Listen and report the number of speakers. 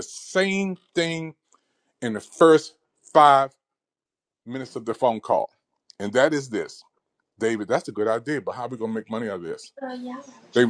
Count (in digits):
1